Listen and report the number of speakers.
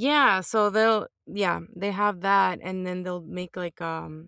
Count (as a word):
one